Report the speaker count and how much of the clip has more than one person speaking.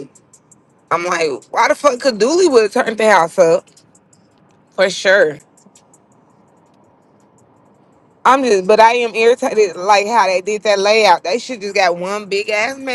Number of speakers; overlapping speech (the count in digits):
1, no overlap